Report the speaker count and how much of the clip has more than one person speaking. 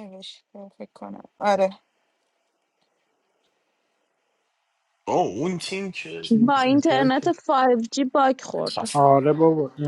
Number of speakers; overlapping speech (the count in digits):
4, about 12%